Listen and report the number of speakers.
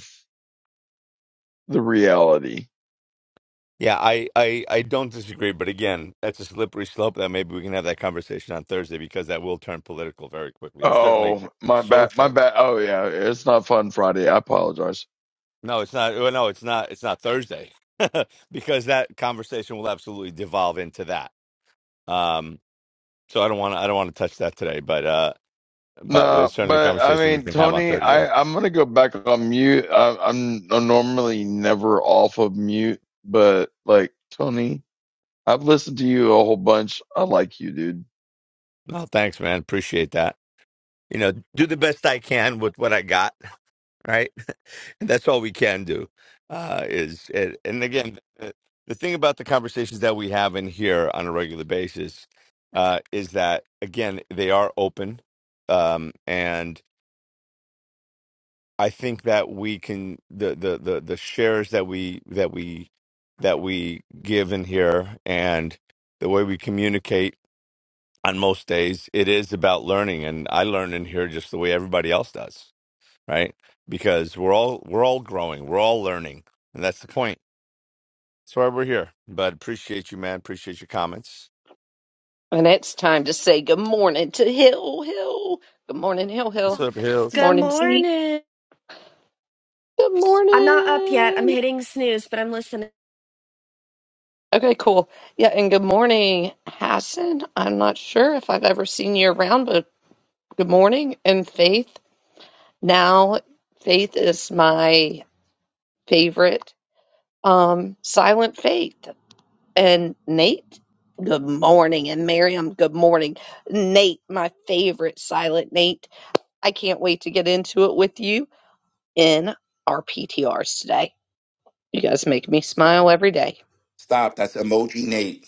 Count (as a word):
five